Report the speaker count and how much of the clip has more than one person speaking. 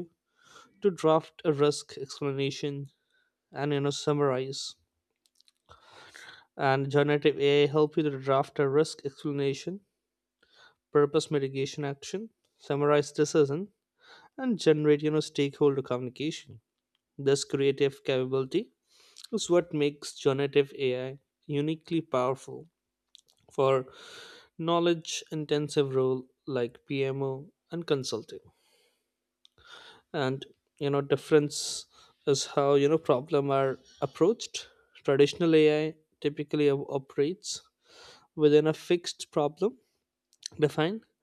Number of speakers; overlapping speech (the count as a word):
one, no overlap